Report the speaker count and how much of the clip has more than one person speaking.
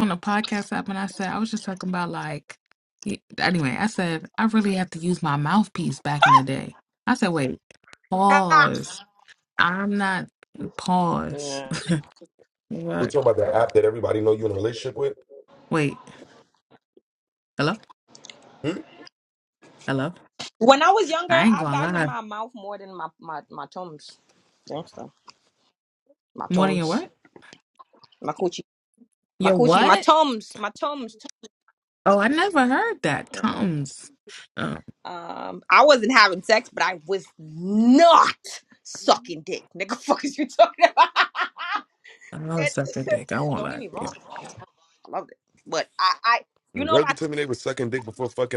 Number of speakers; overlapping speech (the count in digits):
3, about 8%